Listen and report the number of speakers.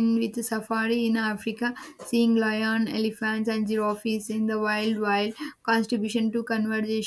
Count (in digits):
1